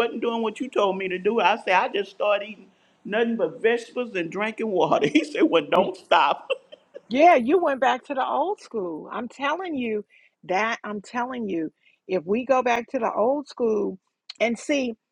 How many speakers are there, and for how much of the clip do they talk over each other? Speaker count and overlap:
two, no overlap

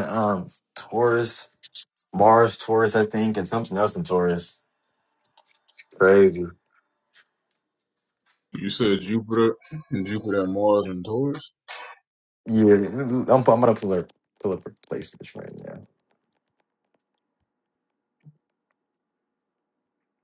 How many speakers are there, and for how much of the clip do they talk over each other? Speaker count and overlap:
two, no overlap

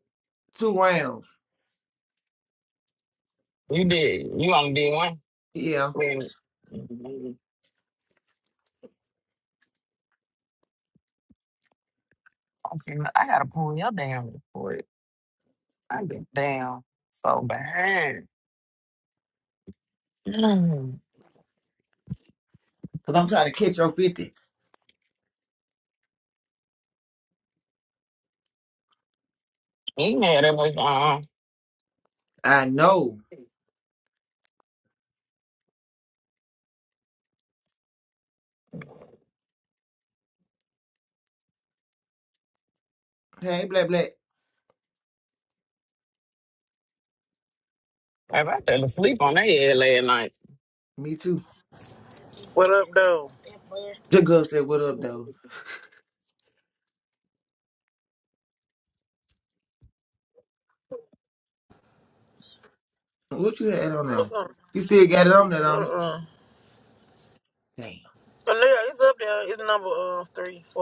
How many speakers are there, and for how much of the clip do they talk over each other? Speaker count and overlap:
three, about 1%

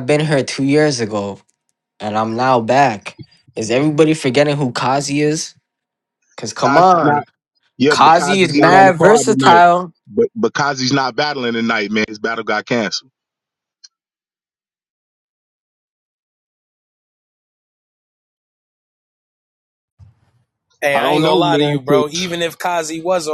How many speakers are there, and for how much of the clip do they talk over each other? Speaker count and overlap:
three, about 15%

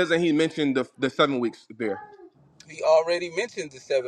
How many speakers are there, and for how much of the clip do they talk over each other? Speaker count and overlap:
two, no overlap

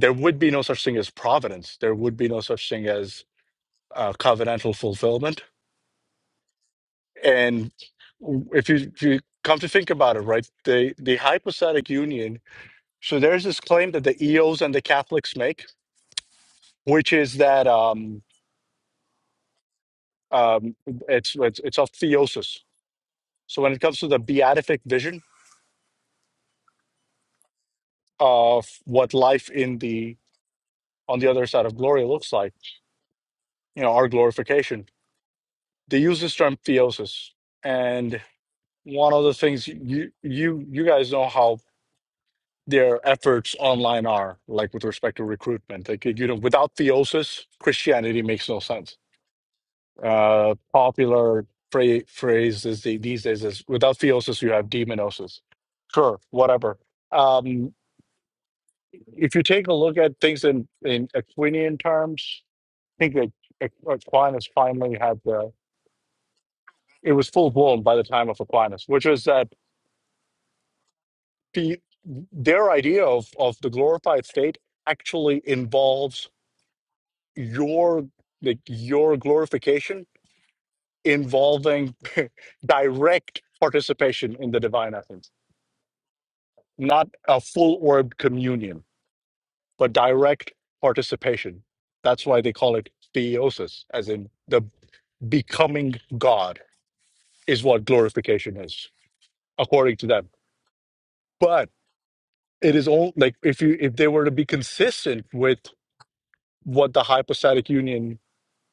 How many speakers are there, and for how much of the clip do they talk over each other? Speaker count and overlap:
one, no overlap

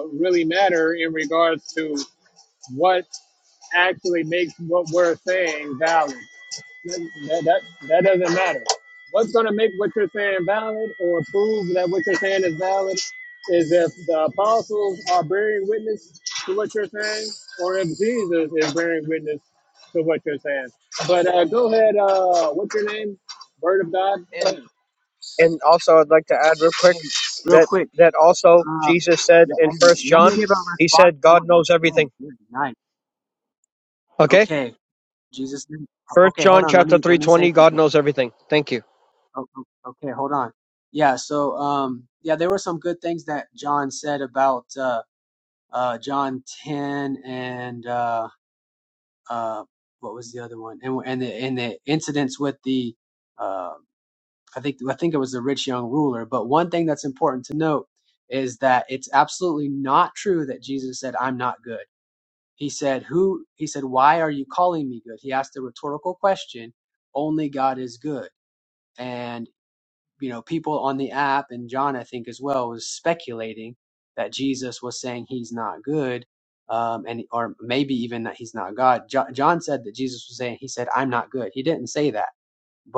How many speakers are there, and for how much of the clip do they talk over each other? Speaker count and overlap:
three, about 6%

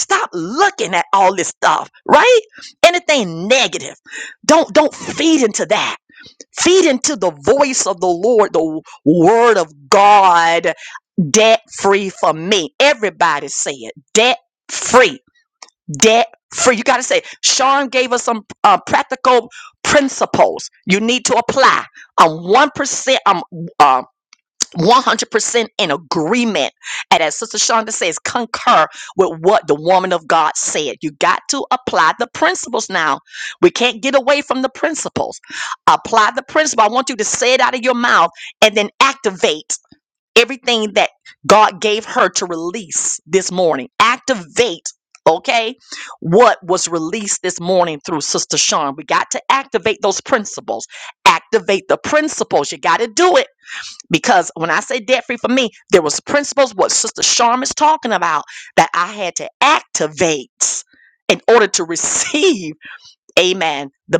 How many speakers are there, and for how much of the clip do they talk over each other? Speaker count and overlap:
one, no overlap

